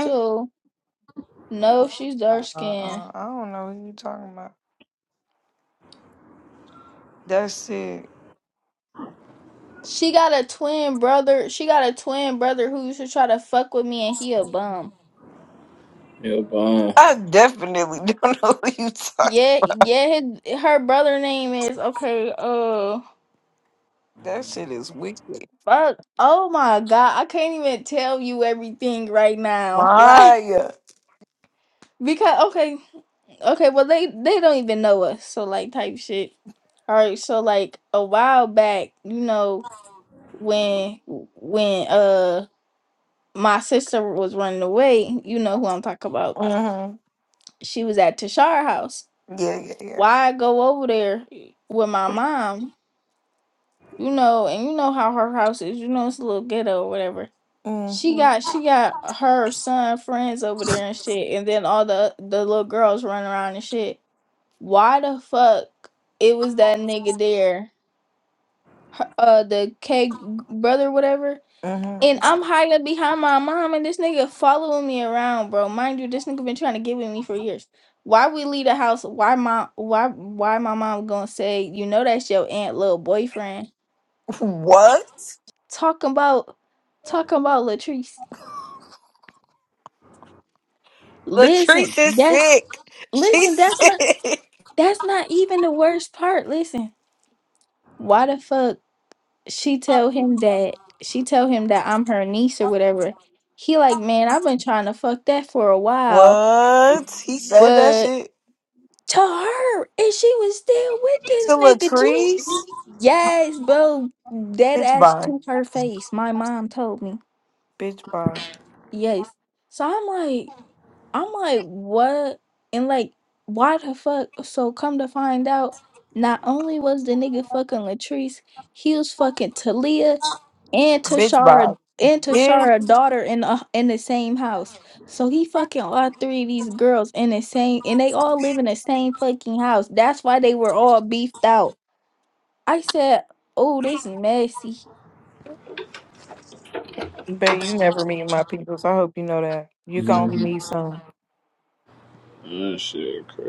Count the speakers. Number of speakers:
3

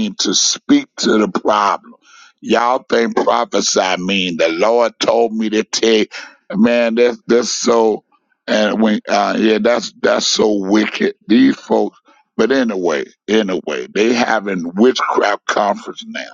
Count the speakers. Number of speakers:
1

